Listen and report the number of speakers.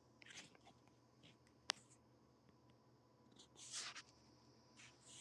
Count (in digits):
0